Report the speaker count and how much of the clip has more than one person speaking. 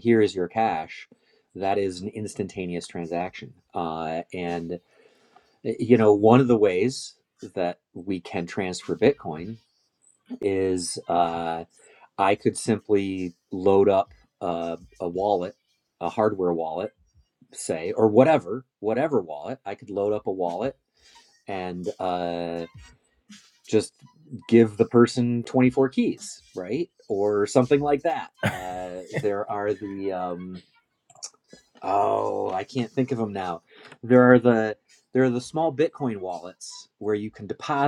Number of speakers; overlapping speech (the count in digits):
1, no overlap